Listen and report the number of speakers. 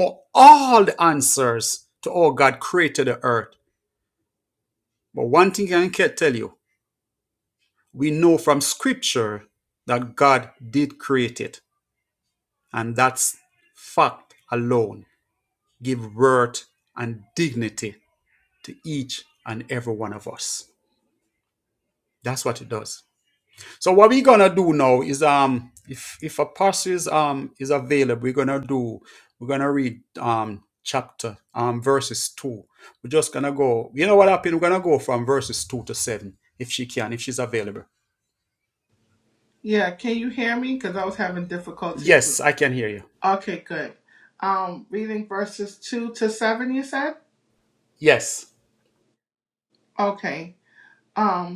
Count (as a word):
two